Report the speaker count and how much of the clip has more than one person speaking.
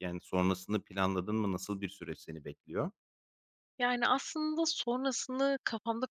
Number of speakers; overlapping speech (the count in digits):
2, no overlap